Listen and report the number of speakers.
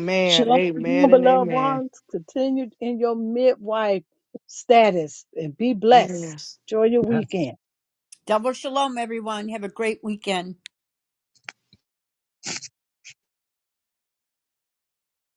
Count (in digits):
3